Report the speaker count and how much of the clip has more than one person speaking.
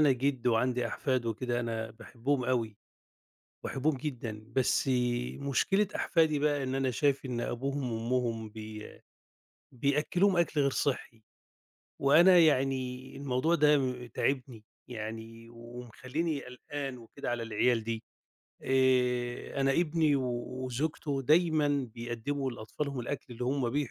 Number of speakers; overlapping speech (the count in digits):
1, no overlap